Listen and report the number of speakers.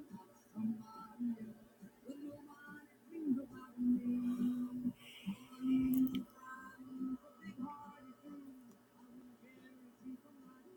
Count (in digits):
0